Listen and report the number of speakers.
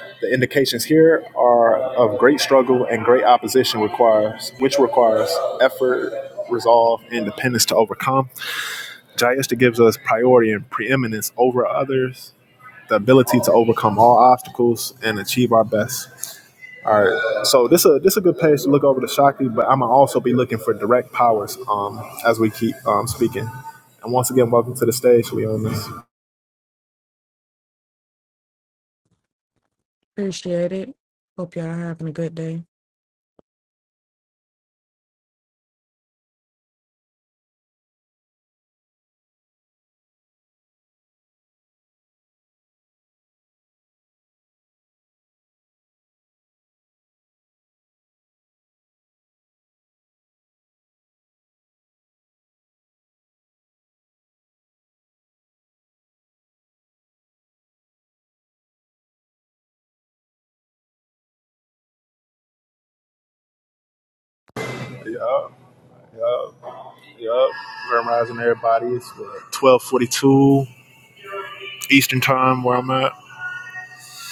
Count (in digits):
2